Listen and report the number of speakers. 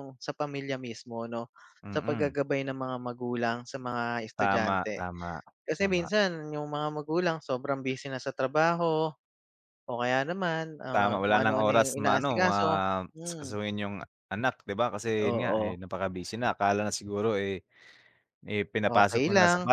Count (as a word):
two